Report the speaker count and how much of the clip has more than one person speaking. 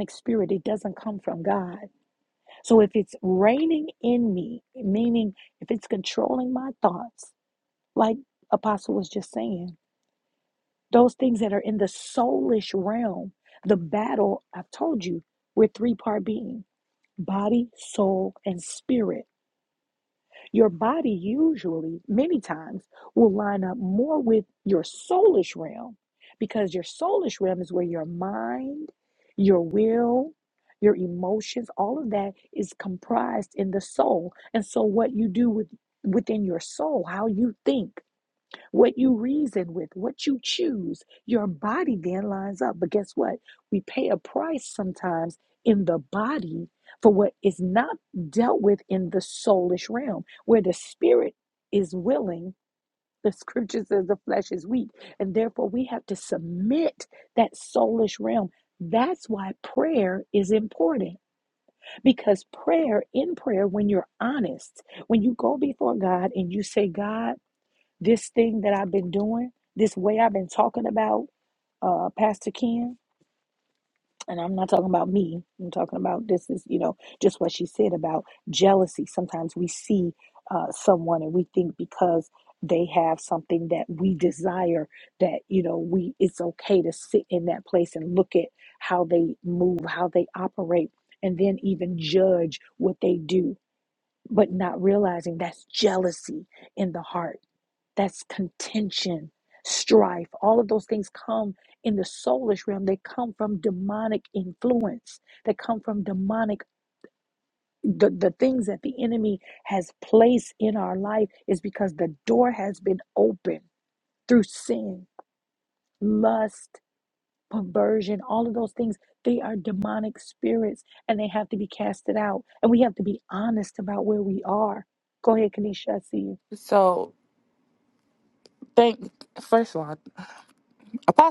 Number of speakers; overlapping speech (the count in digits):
2, no overlap